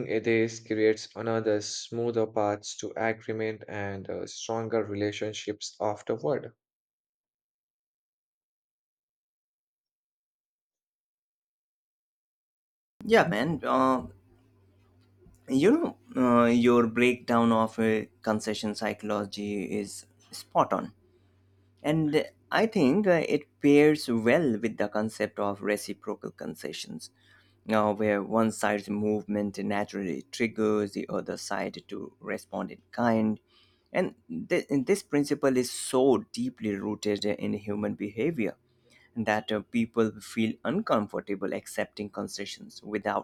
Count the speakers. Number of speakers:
2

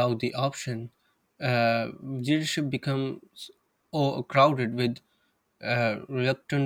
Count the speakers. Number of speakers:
1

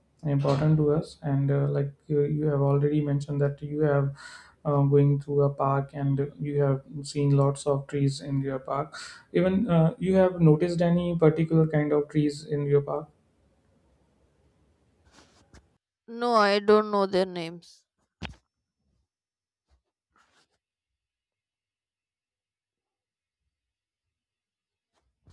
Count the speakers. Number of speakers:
2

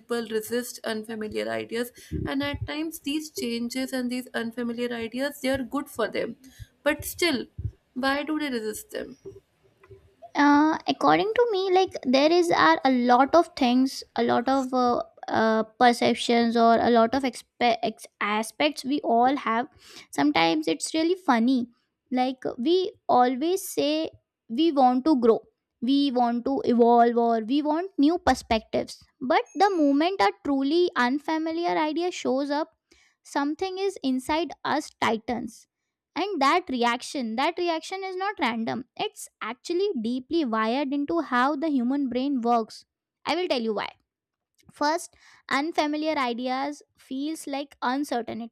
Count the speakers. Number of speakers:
2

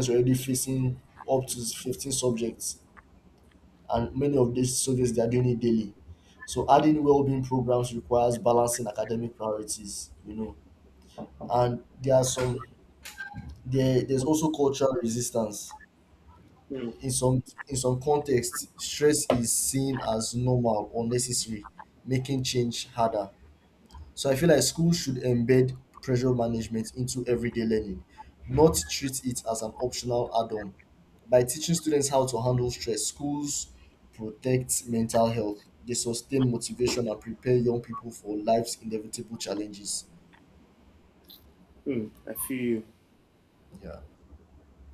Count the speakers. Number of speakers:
2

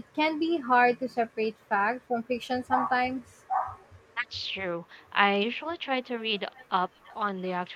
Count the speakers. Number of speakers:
2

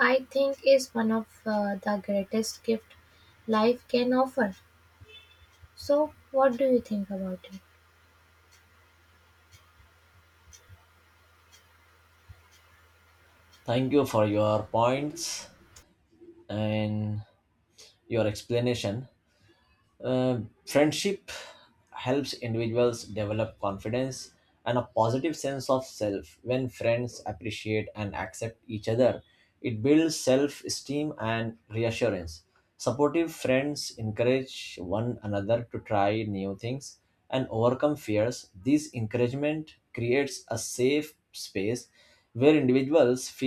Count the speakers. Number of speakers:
2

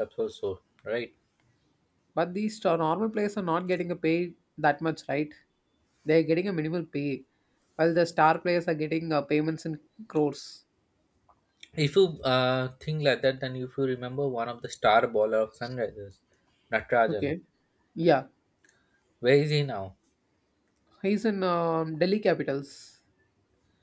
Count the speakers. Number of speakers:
2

